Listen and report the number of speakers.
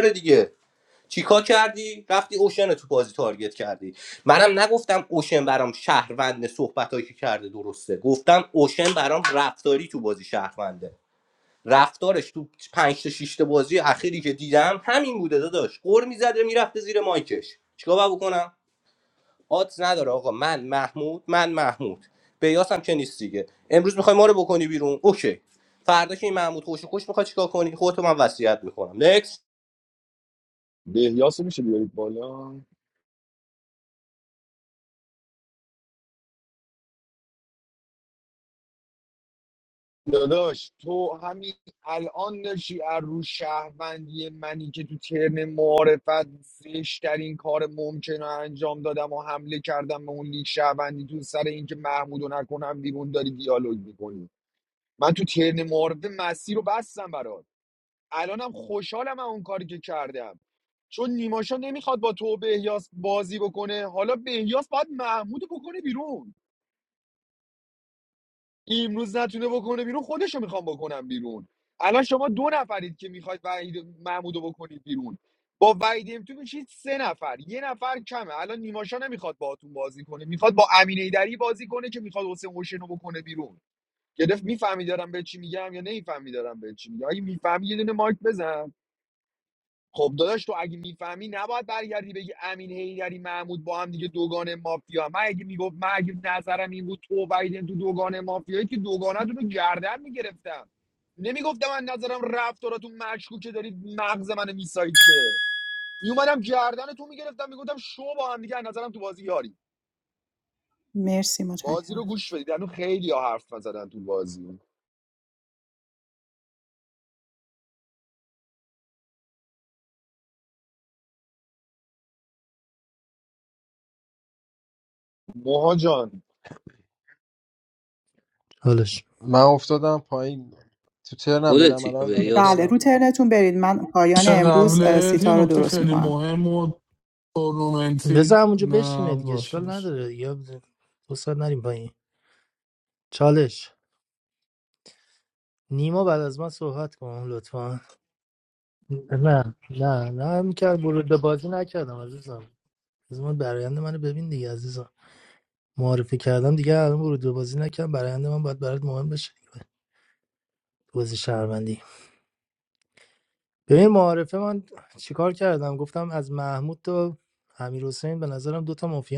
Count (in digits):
6